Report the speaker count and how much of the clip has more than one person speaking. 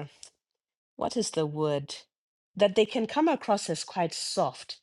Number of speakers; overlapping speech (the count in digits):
1, no overlap